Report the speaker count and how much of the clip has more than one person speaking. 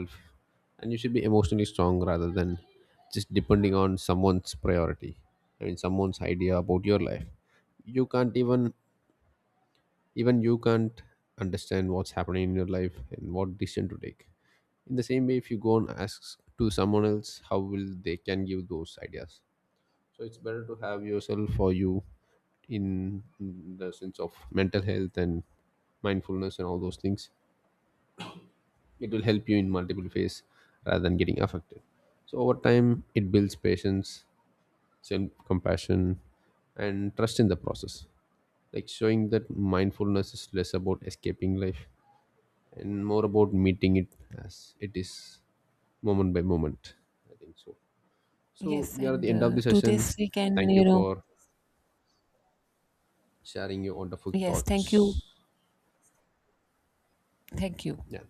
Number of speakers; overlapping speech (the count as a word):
two, about 5%